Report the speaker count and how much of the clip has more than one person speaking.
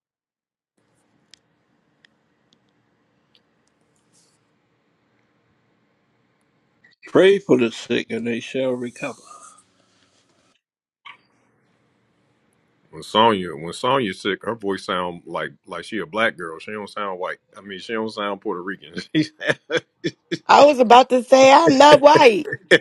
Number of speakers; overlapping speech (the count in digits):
3, no overlap